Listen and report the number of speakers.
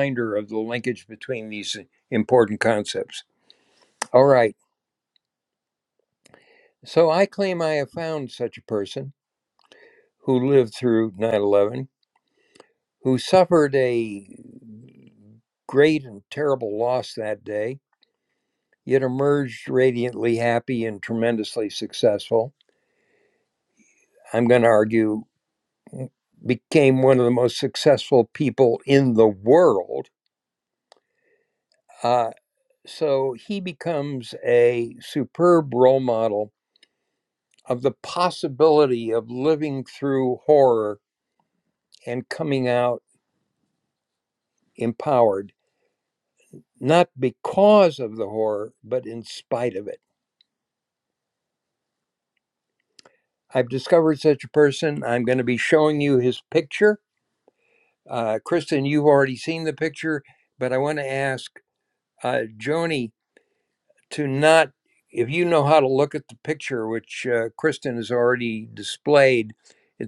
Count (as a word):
one